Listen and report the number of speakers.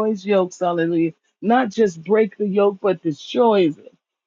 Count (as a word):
one